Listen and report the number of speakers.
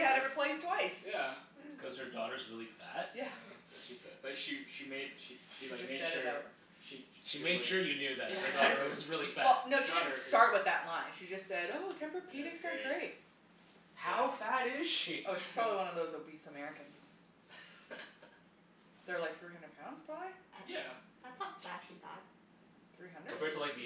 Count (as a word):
four